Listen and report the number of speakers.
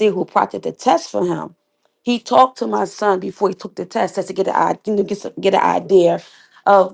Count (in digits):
1